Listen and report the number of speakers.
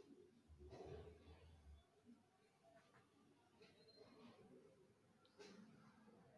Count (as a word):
zero